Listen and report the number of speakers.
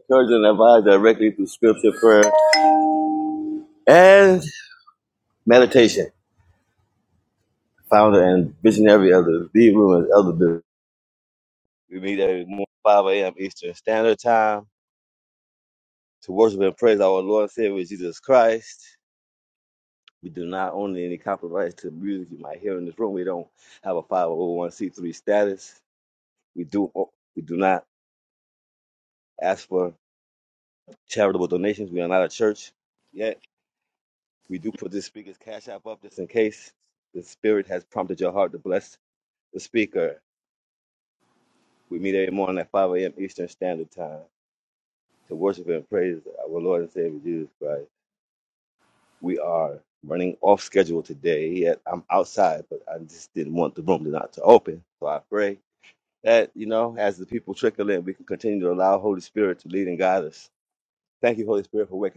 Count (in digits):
1